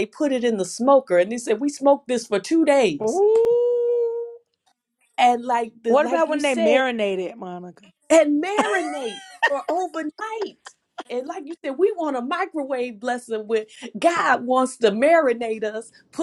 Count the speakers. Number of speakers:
two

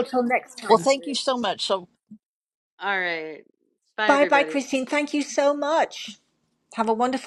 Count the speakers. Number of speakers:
three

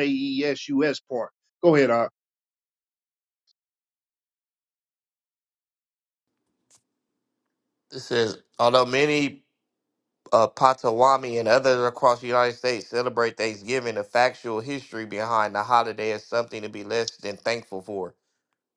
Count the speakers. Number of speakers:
two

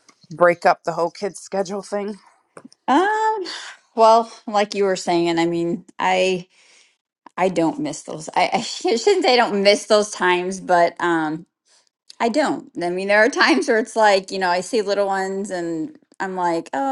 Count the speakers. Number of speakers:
two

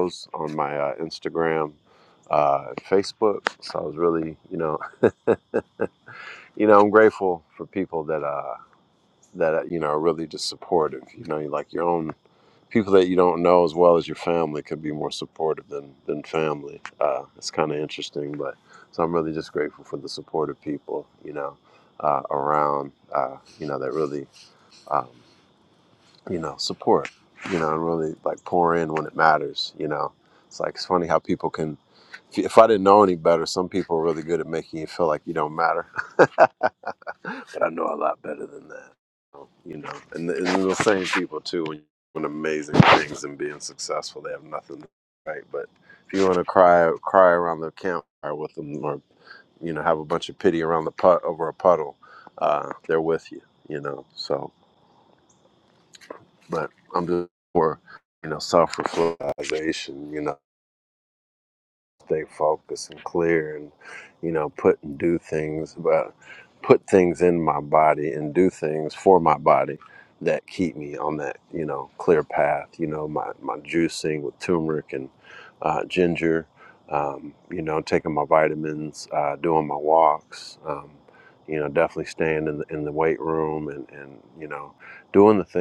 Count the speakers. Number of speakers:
one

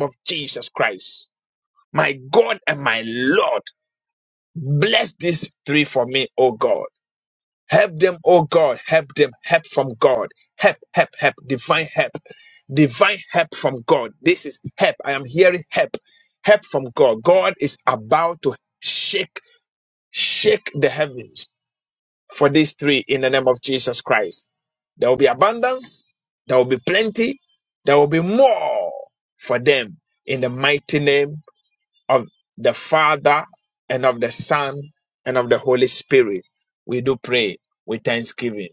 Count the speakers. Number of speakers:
one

